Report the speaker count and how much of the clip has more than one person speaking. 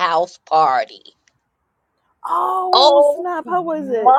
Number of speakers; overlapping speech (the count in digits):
2, about 18%